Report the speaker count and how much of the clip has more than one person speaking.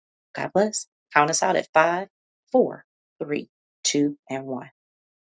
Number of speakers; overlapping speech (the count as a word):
one, no overlap